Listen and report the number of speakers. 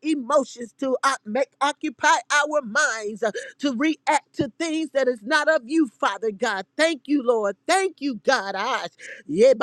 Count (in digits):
1